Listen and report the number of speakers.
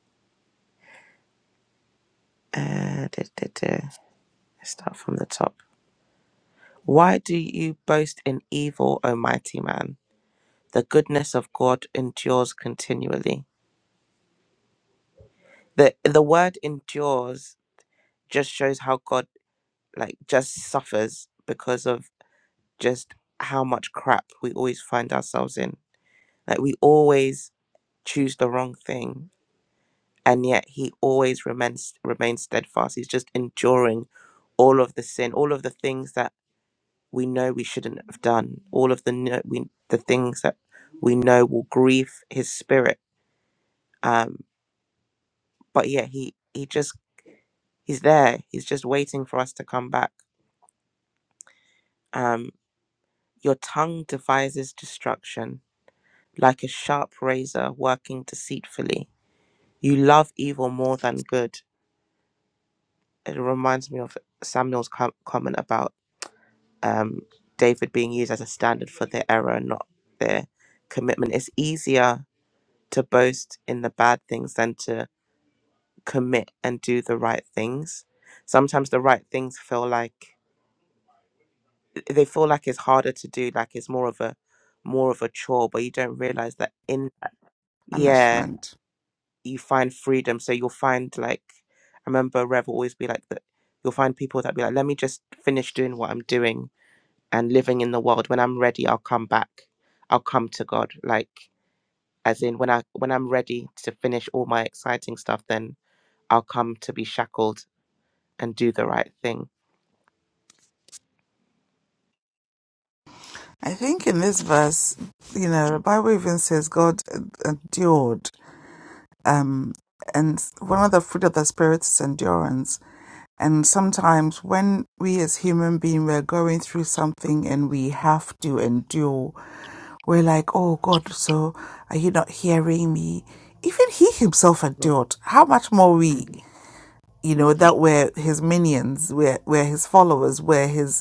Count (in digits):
2